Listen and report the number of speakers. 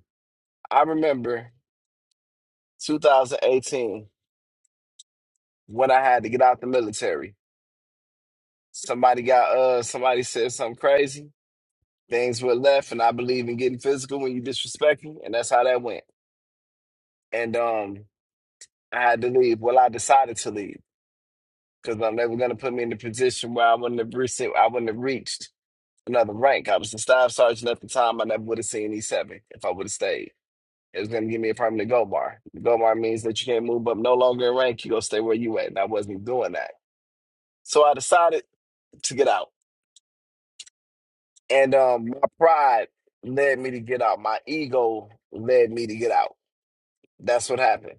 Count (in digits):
1